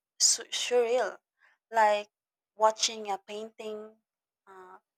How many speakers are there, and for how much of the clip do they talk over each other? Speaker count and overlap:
one, no overlap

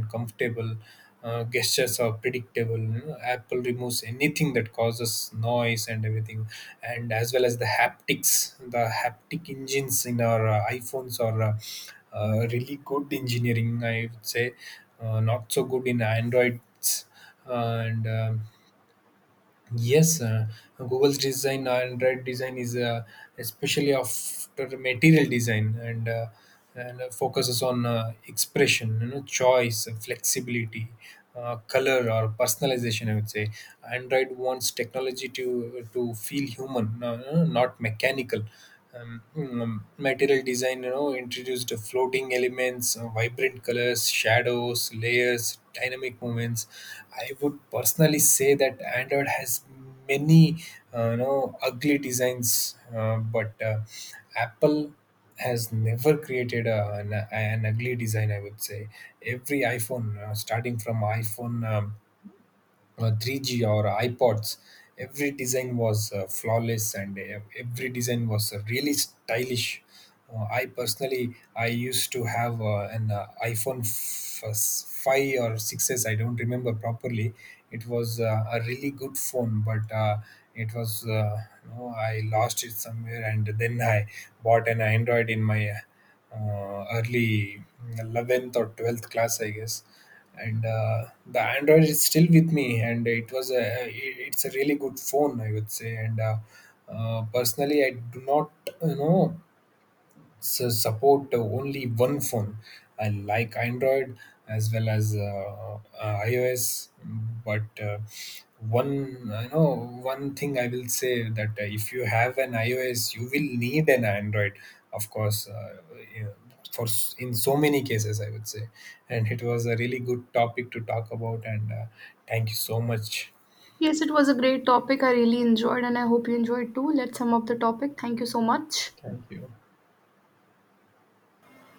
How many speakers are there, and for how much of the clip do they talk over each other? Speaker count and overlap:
two, no overlap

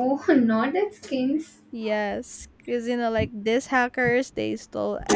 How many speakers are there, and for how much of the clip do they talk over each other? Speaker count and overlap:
two, no overlap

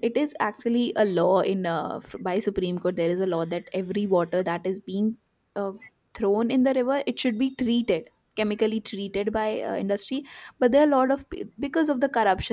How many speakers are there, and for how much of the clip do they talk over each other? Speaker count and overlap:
one, no overlap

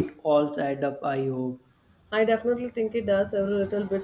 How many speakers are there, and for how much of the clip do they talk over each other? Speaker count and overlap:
two, no overlap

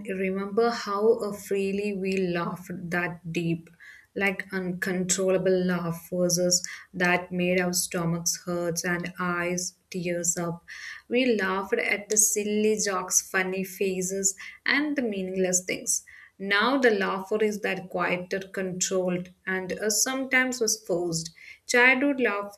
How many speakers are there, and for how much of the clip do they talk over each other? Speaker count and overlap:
one, no overlap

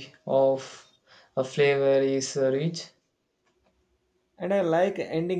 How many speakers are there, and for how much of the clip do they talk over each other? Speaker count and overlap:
two, no overlap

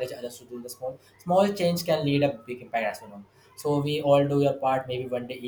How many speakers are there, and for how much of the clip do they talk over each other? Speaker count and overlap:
one, no overlap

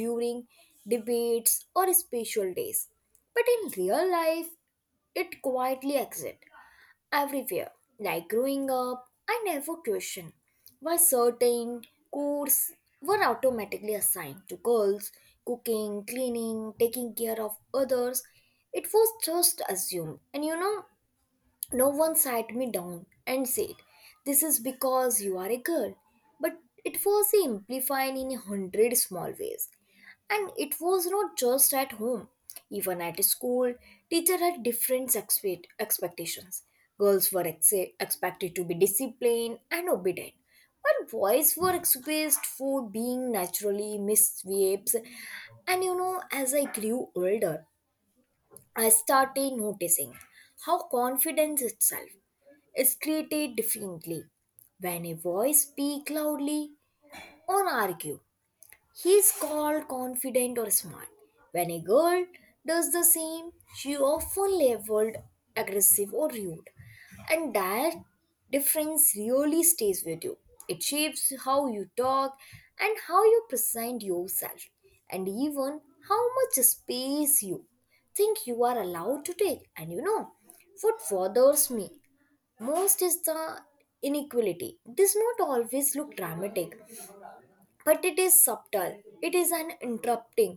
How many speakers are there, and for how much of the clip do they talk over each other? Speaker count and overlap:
one, no overlap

